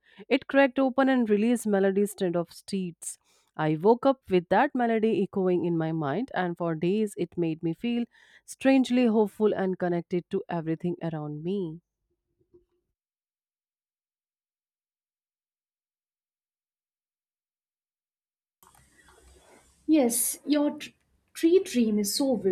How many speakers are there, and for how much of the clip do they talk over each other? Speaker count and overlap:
two, no overlap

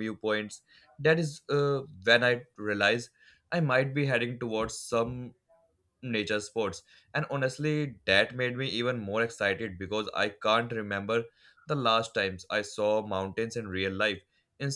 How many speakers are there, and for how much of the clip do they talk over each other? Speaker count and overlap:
one, no overlap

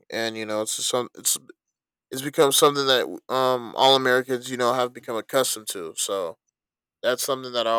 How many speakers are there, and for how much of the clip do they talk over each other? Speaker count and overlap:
one, no overlap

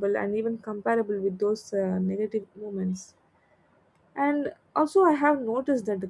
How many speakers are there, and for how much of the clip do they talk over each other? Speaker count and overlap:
one, no overlap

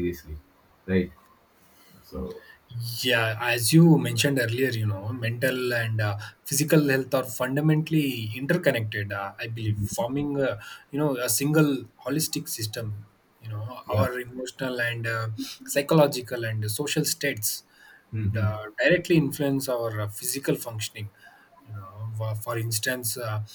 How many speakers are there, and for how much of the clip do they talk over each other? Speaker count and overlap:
two, about 1%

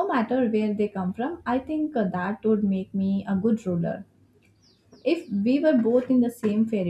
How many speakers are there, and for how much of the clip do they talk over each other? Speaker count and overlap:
one, no overlap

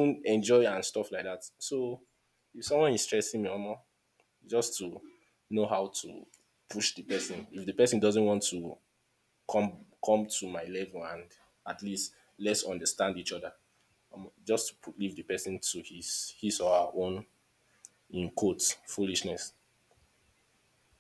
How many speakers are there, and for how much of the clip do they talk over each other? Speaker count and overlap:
one, no overlap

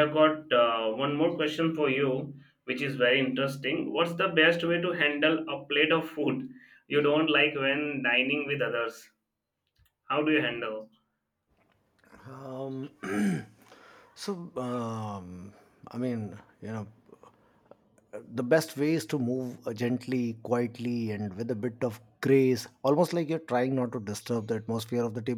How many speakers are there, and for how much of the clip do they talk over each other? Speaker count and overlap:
two, no overlap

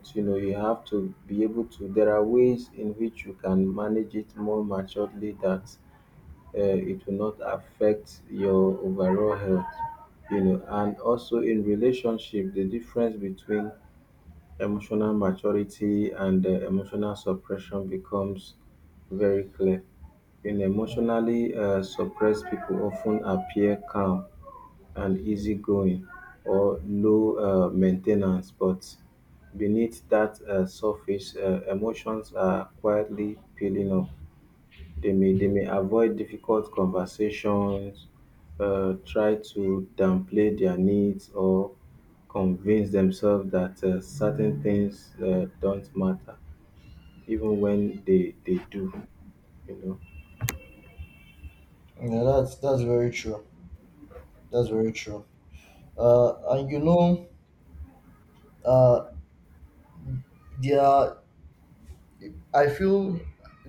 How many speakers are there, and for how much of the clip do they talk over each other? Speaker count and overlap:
two, no overlap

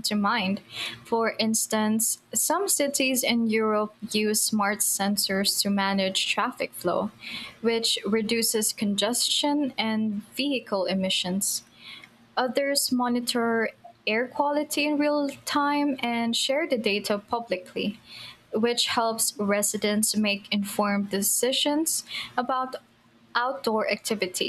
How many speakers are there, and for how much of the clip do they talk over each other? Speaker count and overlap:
one, no overlap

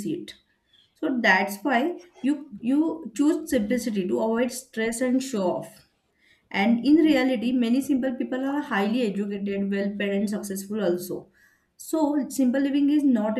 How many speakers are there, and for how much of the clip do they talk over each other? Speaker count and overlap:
one, no overlap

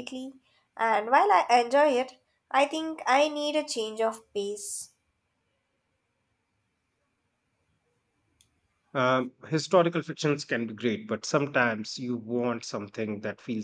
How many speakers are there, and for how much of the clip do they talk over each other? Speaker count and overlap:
two, no overlap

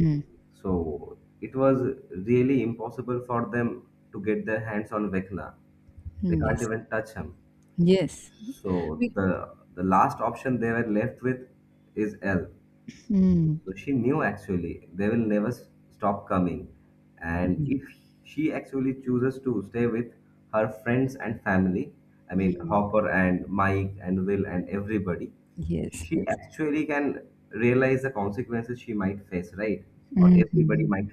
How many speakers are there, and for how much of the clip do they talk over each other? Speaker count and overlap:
two, about 6%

